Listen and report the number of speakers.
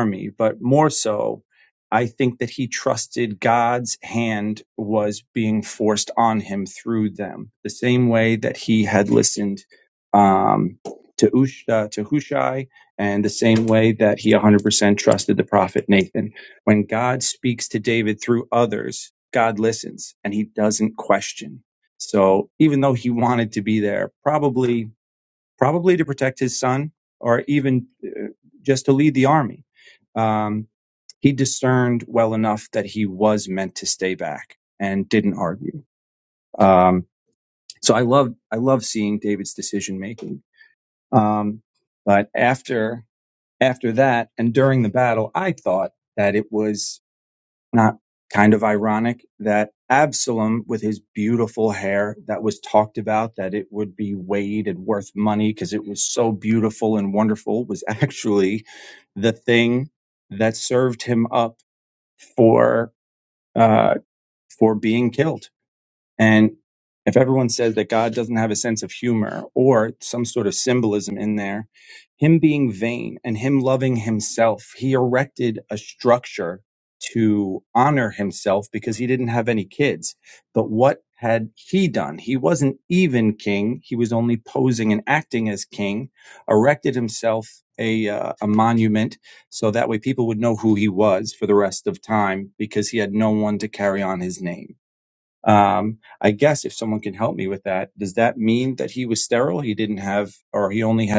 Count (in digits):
1